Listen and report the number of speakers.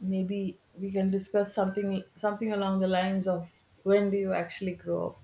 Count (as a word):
one